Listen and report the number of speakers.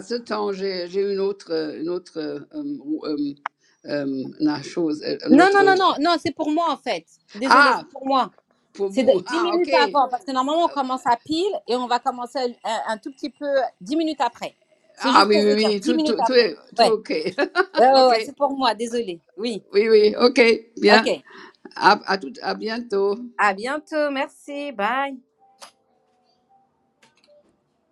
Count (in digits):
2